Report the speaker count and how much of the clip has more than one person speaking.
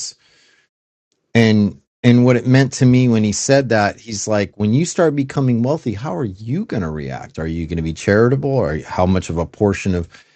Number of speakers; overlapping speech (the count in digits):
1, no overlap